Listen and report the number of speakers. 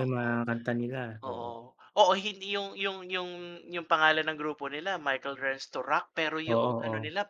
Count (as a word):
two